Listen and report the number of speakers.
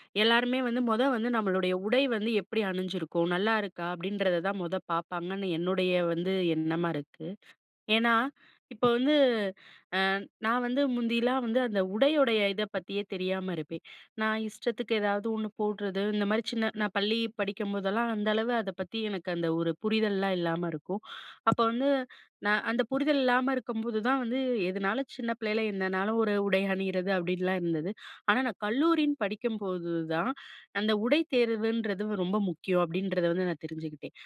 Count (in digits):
1